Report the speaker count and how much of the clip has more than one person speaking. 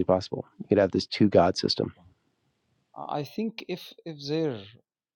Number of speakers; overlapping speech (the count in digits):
2, no overlap